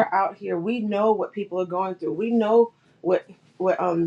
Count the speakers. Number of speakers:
1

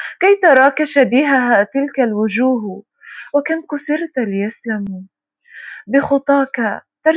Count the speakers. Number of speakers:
1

